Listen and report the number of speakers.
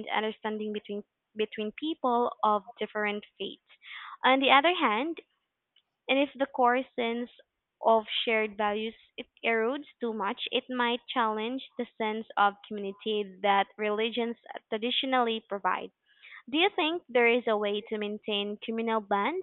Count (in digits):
1